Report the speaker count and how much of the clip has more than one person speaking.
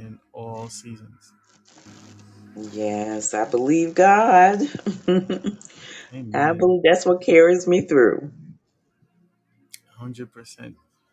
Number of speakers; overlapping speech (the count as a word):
two, about 3%